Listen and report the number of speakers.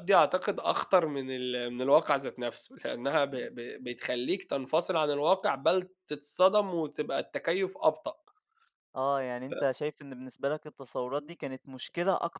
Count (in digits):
2